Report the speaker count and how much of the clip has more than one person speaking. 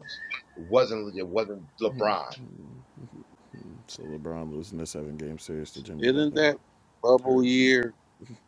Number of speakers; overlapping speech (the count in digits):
3, about 10%